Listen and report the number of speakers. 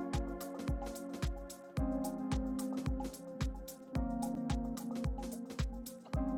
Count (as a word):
zero